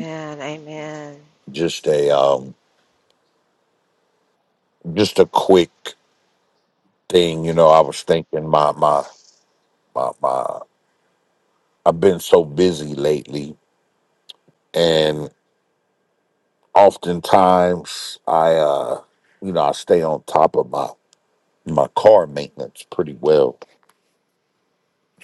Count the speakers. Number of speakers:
2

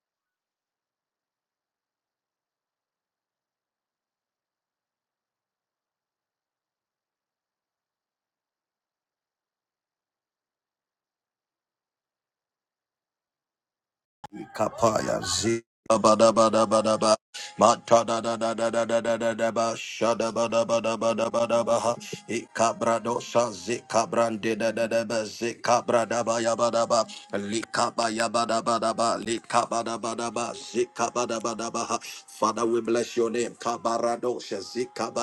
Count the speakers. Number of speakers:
1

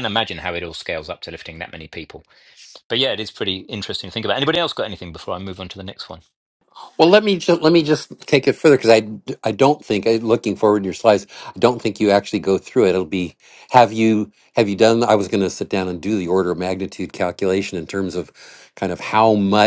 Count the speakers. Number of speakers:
2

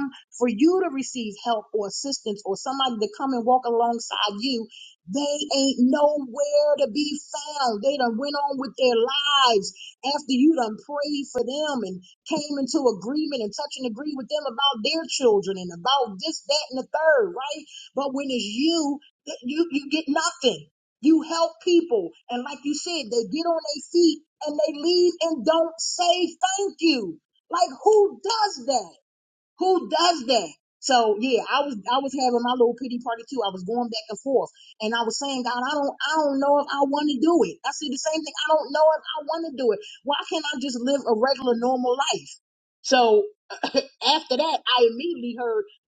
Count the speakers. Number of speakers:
1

